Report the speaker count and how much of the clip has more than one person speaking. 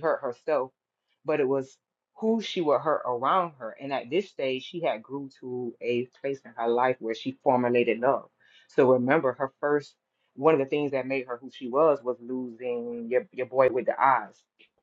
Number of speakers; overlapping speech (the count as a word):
one, no overlap